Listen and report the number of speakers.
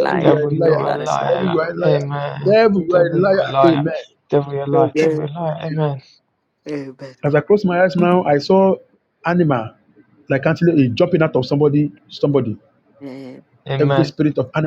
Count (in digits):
3